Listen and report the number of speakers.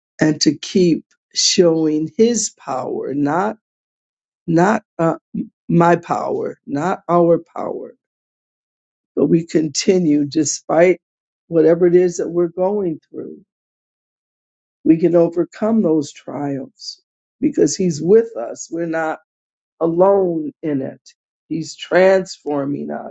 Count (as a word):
one